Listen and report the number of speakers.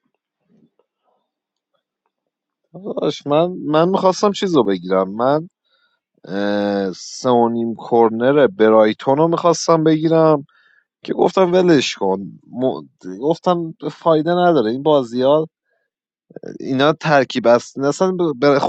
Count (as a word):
one